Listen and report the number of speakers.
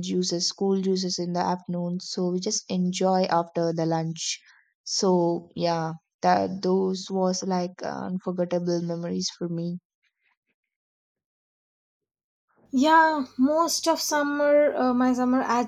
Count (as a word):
two